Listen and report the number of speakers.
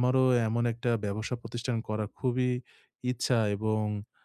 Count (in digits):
1